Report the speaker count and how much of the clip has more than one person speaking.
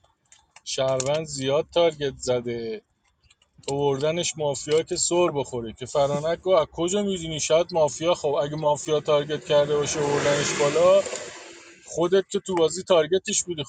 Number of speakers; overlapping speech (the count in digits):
1, no overlap